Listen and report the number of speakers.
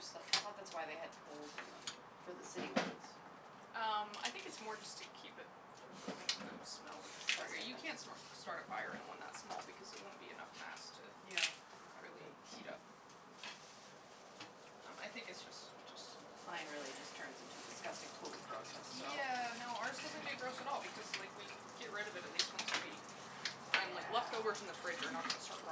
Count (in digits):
2